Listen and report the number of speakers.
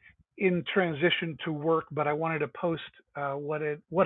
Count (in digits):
1